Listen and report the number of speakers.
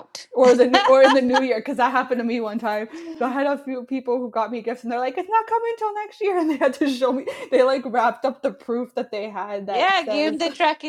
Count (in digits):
2